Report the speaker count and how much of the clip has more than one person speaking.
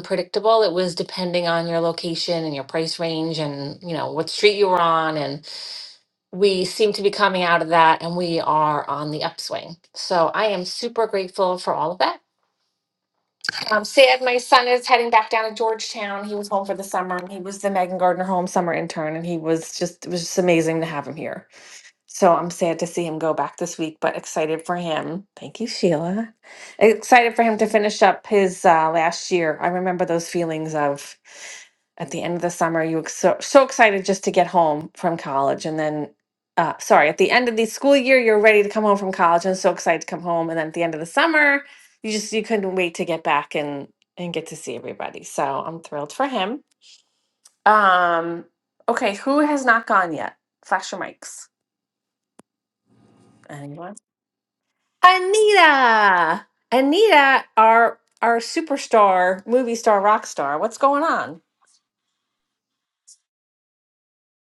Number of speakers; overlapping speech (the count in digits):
1, no overlap